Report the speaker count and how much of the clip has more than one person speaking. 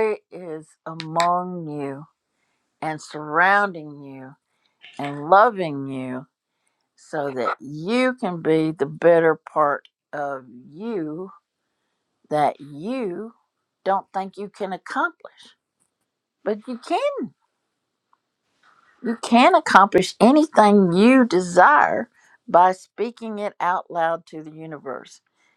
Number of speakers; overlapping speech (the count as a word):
one, no overlap